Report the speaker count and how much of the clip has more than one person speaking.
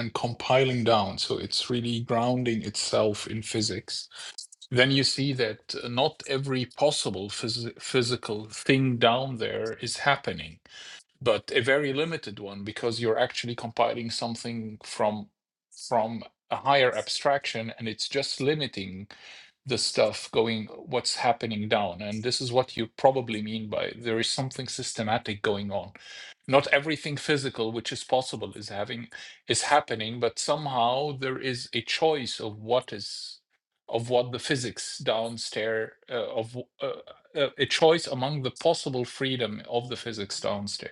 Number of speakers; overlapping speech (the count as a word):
one, no overlap